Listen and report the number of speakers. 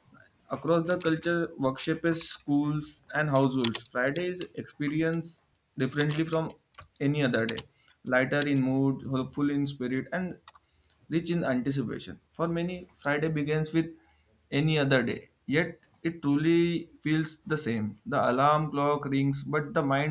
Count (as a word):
one